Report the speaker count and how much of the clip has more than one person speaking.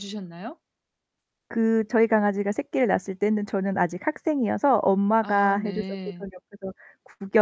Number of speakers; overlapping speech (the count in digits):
2, about 13%